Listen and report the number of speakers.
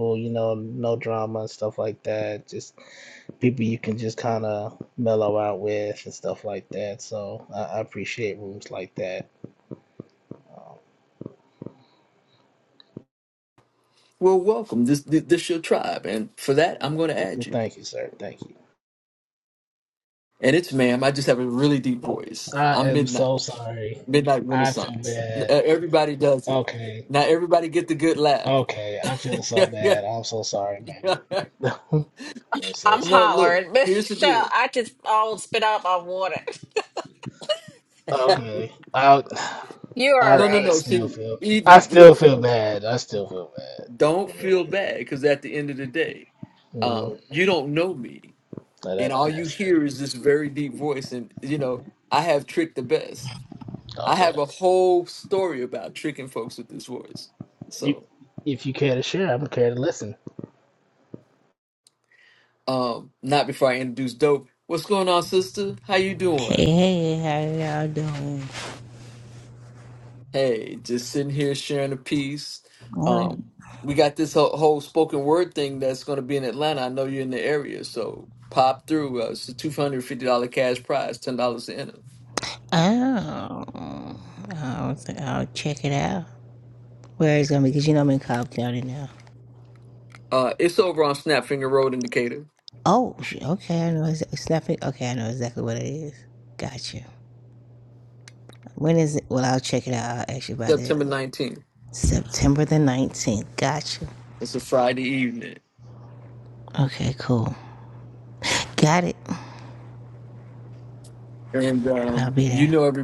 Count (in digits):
4